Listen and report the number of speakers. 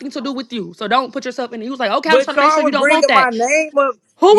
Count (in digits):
2